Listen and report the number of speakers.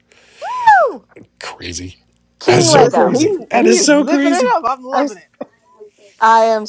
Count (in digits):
3